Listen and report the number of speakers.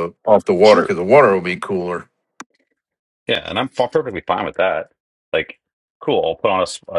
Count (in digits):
2